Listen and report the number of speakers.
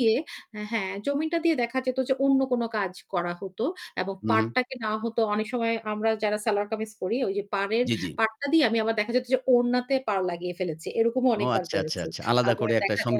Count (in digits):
2